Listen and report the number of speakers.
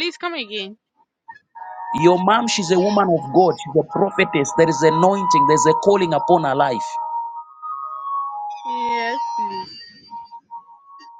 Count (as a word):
two